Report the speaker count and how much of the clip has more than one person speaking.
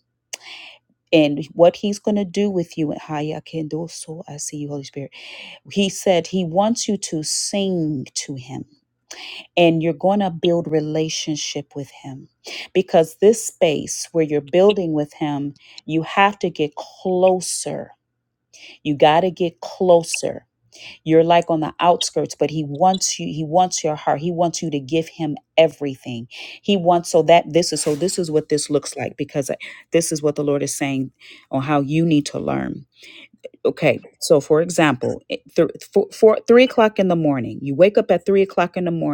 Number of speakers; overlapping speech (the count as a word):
one, no overlap